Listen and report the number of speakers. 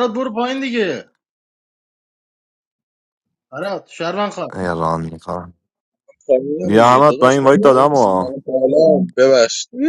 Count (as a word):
three